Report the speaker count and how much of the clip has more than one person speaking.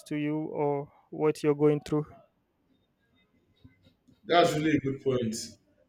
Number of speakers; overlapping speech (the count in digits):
2, no overlap